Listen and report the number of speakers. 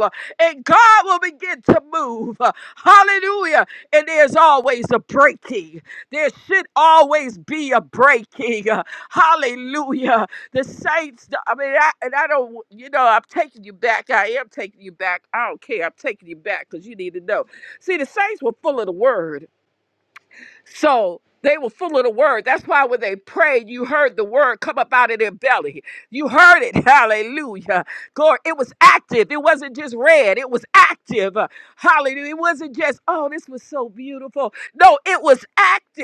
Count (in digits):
1